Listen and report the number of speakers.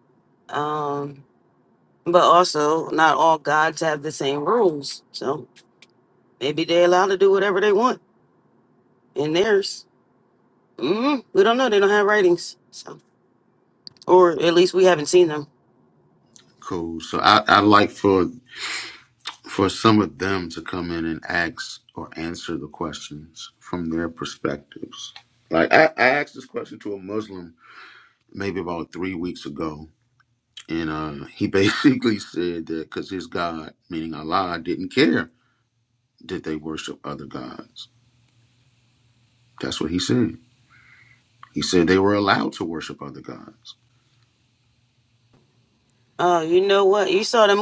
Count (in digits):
2